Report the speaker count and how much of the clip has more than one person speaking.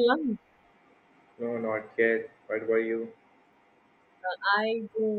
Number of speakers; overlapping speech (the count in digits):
2, no overlap